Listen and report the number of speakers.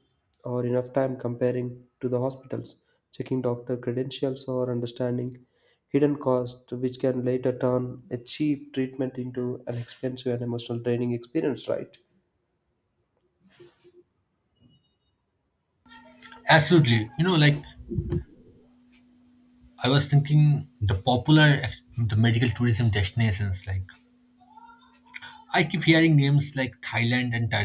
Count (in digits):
2